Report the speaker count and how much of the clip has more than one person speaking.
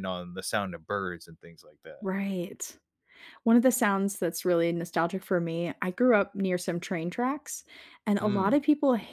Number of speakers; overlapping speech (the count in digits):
2, about 4%